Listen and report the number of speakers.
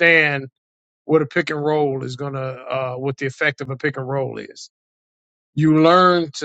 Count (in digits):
1